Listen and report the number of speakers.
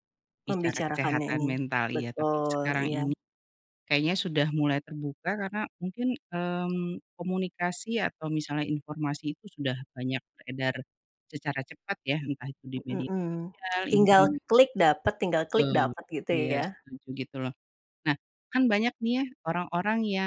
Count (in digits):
2